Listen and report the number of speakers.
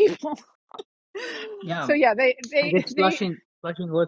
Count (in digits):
2